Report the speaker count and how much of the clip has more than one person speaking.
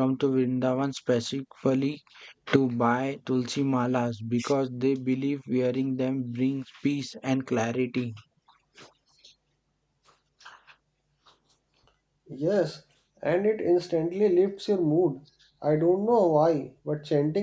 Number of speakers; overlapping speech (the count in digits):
2, no overlap